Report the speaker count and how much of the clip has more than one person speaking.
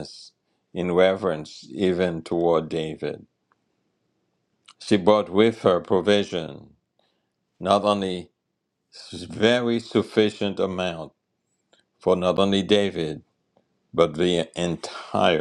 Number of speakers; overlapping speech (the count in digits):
1, no overlap